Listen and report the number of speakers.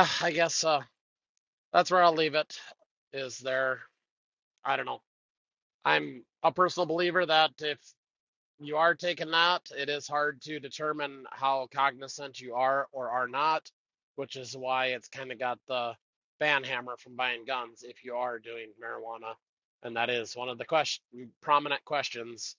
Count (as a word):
one